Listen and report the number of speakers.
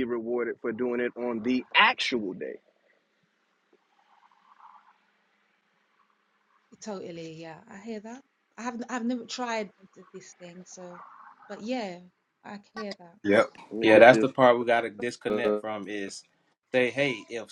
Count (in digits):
3